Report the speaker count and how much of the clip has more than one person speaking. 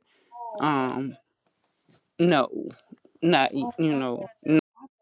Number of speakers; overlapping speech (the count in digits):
2, about 20%